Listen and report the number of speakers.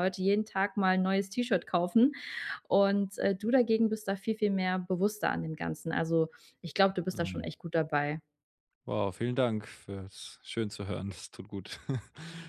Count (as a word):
two